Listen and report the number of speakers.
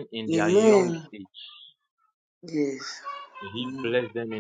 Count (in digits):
2